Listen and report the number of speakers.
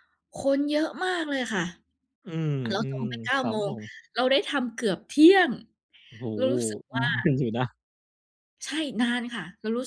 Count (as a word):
two